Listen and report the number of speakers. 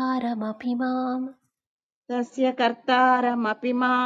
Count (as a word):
two